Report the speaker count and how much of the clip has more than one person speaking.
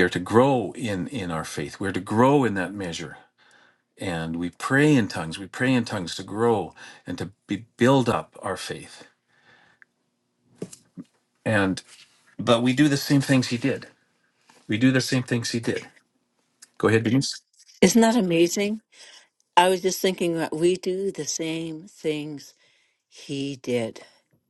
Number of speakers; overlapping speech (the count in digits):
2, no overlap